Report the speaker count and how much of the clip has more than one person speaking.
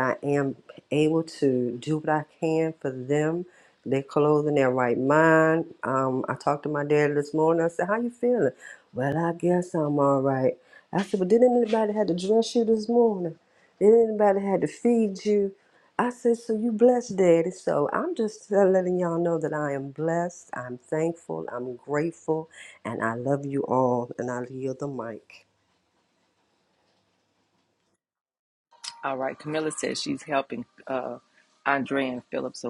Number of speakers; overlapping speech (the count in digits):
2, no overlap